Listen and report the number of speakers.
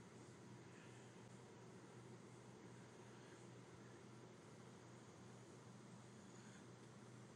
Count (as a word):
zero